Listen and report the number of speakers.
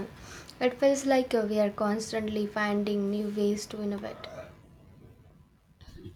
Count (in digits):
1